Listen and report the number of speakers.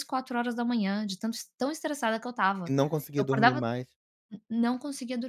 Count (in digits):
2